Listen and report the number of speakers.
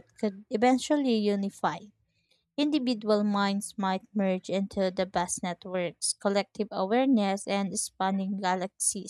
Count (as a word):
one